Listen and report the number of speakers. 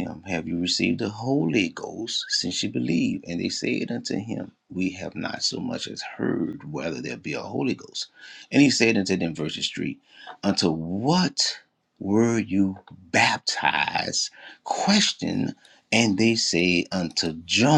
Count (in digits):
1